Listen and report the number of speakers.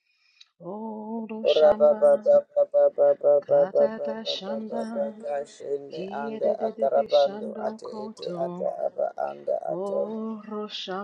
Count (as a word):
two